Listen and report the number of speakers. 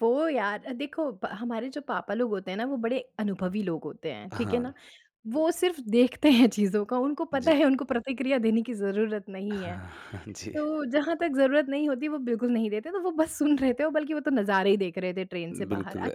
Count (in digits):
2